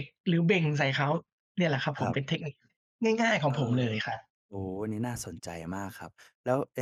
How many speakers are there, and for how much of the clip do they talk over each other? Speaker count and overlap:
2, about 8%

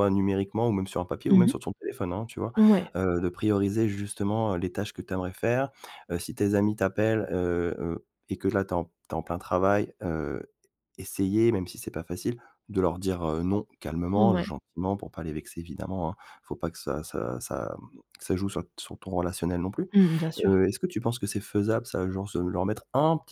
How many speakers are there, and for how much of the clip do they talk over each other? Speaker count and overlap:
2, about 3%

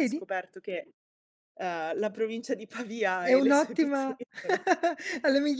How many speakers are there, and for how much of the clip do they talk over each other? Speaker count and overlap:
2, about 20%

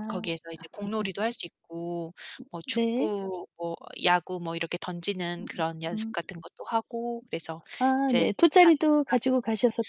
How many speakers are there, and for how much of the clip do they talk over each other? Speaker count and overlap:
2, about 21%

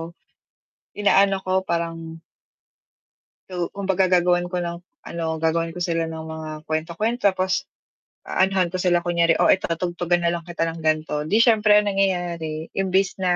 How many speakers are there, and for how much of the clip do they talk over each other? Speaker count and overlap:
1, no overlap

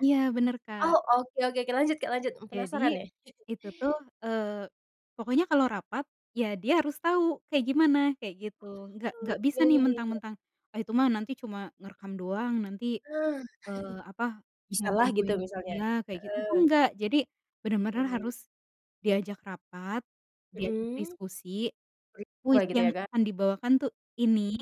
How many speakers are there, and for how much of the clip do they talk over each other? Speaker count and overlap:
2, about 18%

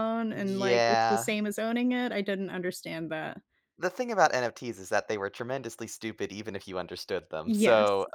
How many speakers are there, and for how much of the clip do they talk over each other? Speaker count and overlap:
2, about 17%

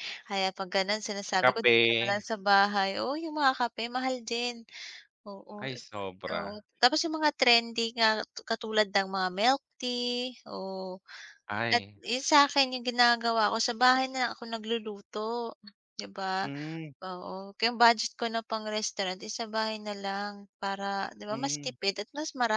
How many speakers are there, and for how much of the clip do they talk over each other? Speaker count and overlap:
2, about 8%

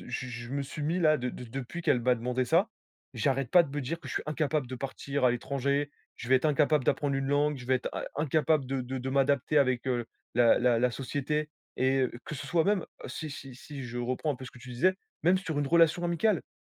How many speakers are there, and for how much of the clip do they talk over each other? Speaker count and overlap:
1, no overlap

